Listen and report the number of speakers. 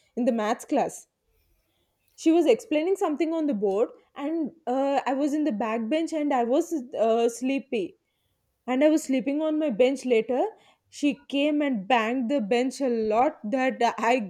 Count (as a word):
one